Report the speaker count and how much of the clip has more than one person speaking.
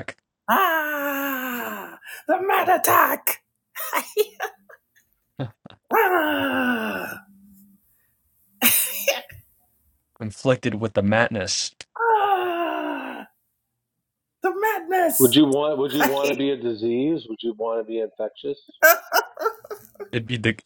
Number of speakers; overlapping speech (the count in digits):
3, no overlap